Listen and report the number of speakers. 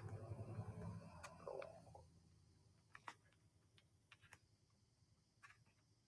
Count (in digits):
0